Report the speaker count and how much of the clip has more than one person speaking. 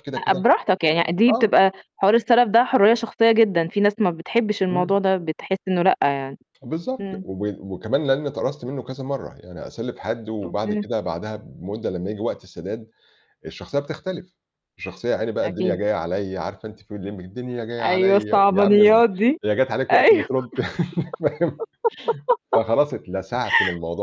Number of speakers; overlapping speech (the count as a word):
two, about 13%